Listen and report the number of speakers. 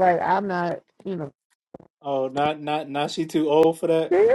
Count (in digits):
2